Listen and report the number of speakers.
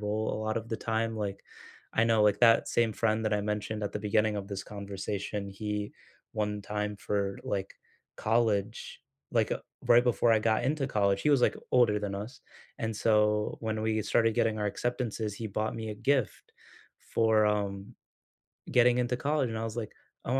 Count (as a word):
one